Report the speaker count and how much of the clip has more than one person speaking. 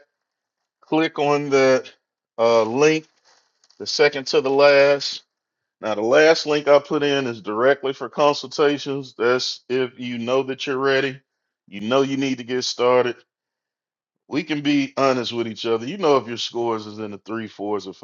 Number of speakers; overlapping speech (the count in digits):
1, no overlap